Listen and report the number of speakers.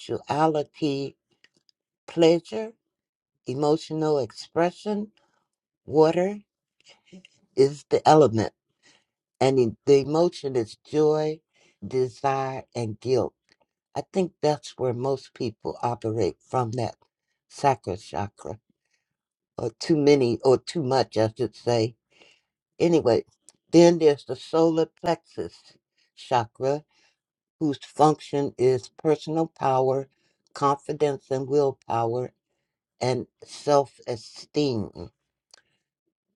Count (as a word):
one